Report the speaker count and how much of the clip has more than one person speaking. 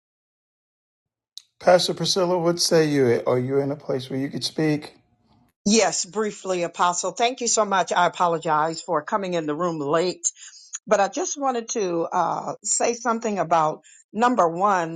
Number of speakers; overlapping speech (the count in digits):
2, no overlap